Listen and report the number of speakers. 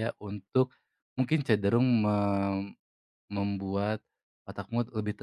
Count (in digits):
1